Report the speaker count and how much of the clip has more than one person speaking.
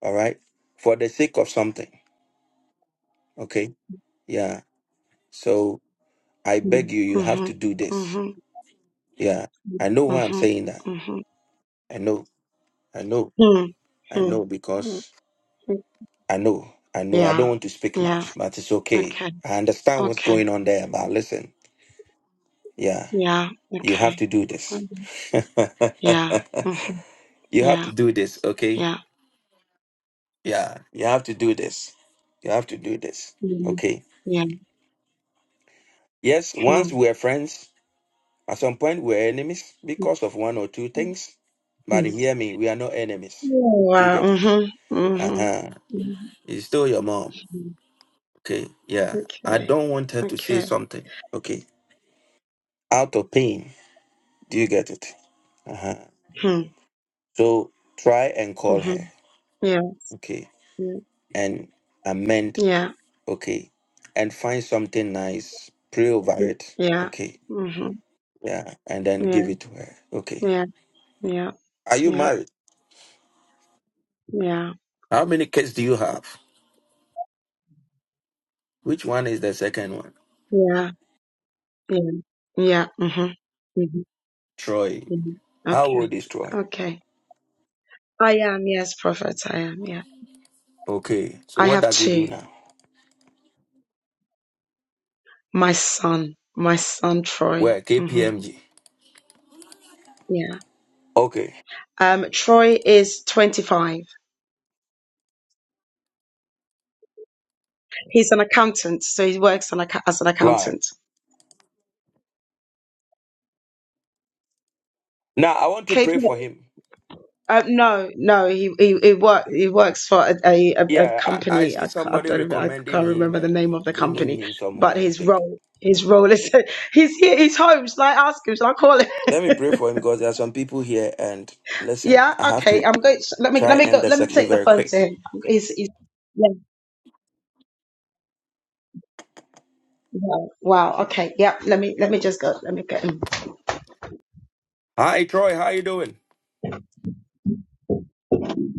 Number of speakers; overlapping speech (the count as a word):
two, about 11%